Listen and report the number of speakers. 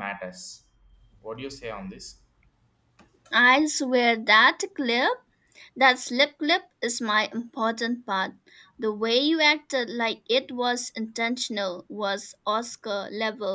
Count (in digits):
2